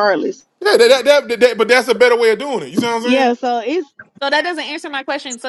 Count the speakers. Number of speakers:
three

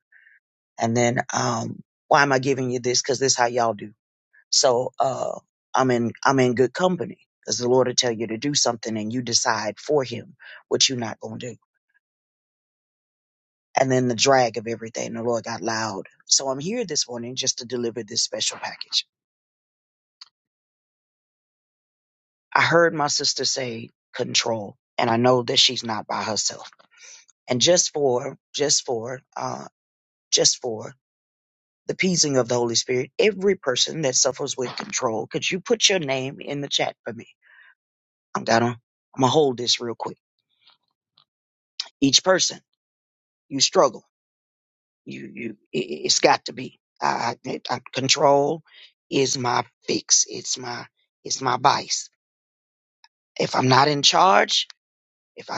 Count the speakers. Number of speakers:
one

